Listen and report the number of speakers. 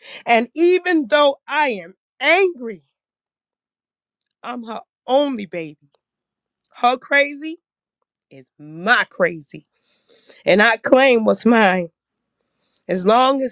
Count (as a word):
one